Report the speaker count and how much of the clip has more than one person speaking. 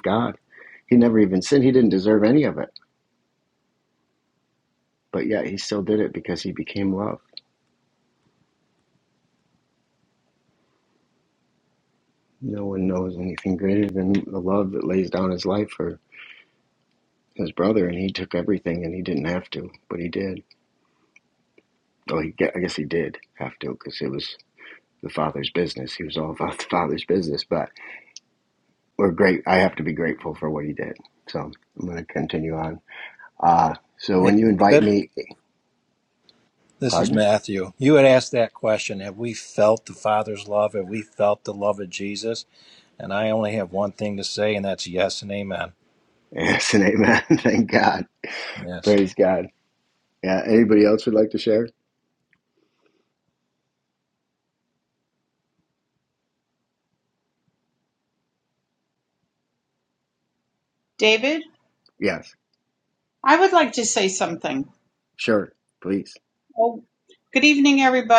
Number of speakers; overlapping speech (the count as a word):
three, about 2%